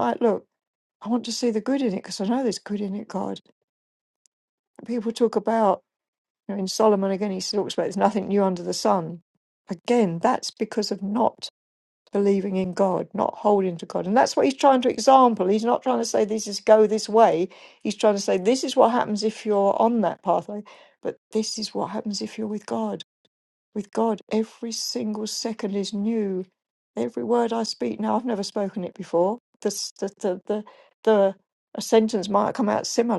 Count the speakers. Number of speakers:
1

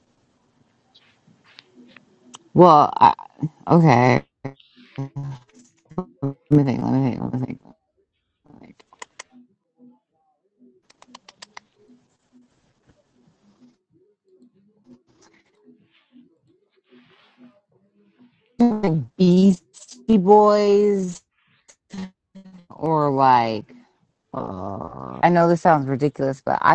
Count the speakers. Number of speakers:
1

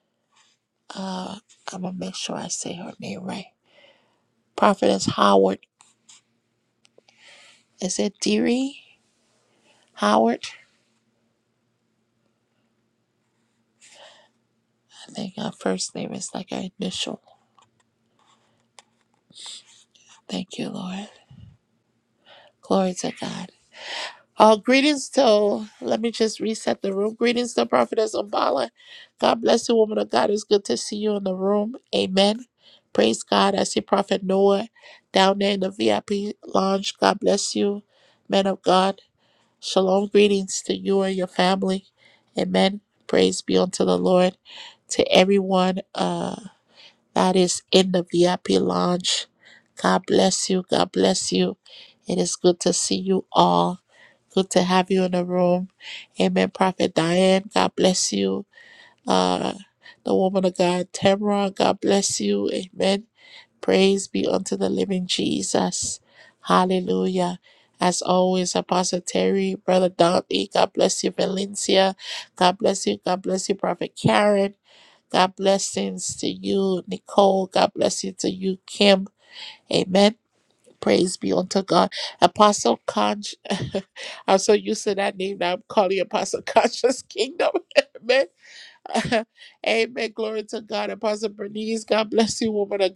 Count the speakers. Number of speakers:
1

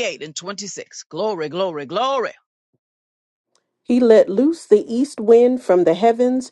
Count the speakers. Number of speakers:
2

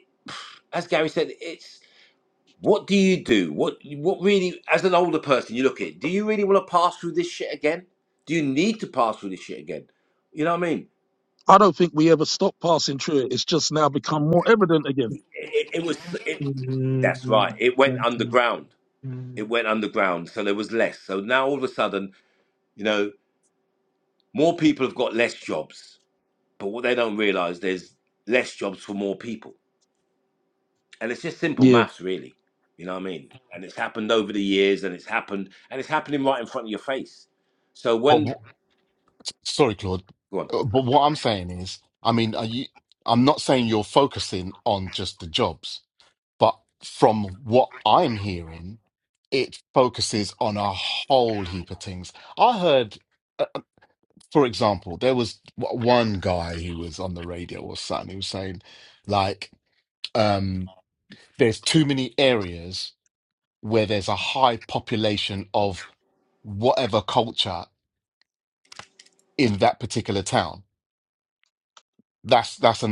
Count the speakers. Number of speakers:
4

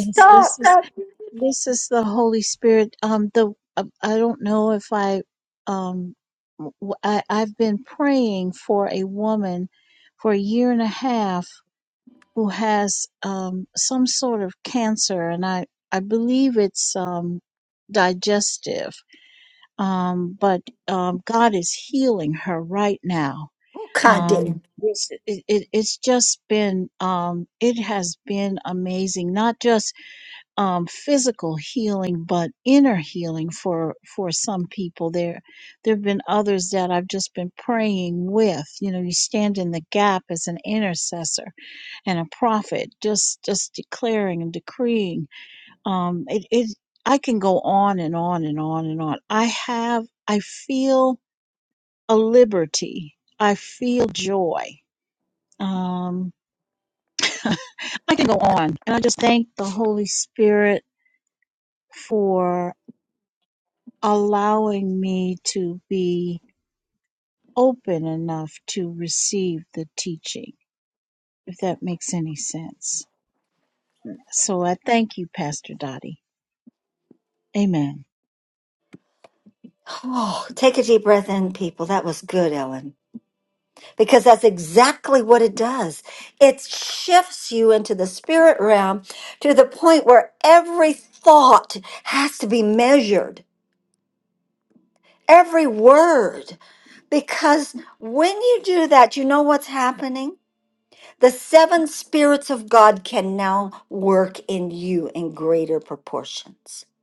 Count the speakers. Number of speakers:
2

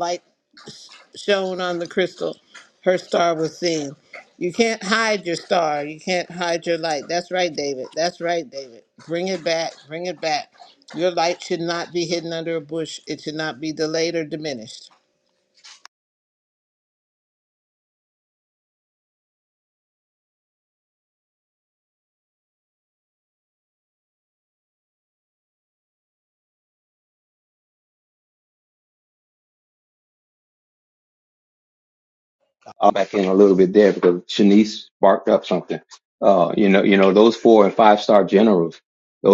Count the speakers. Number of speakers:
2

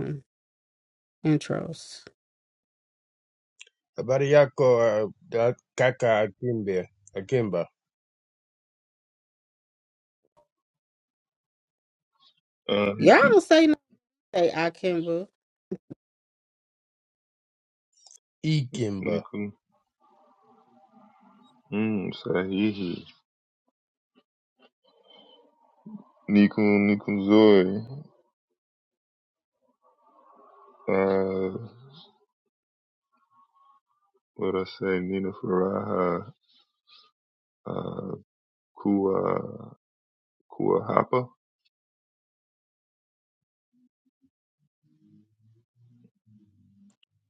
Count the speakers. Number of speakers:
3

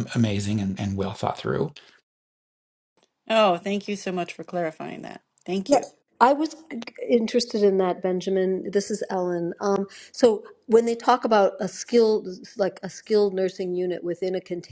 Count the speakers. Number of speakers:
3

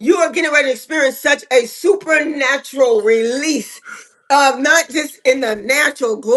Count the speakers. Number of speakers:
1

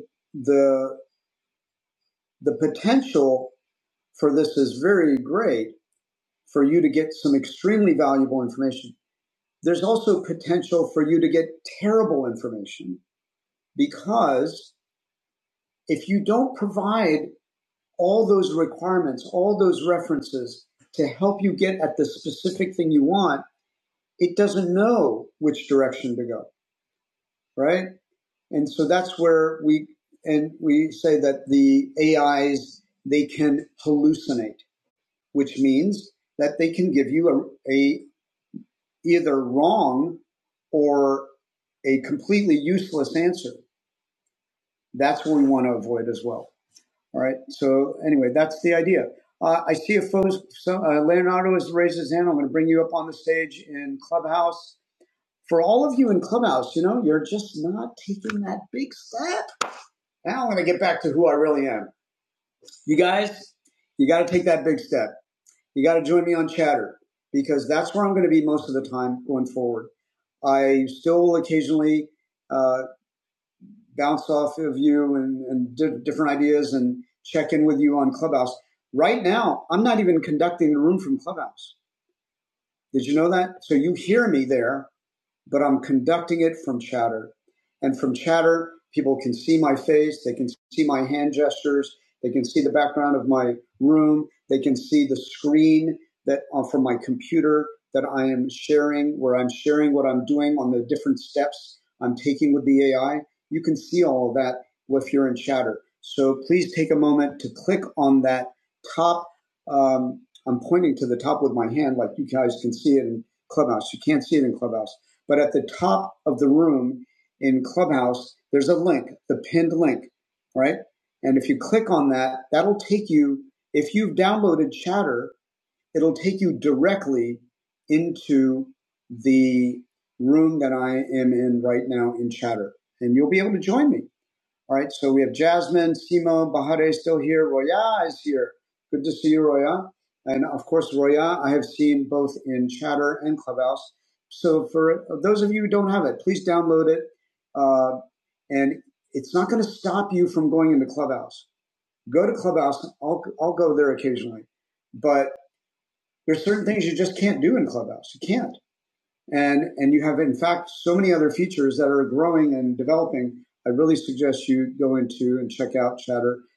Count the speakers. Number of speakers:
1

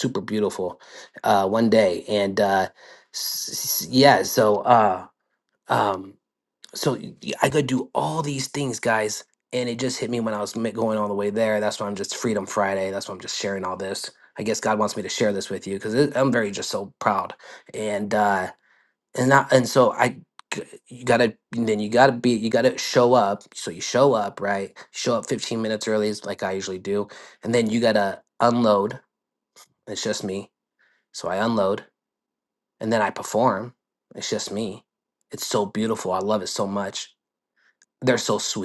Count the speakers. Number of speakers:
1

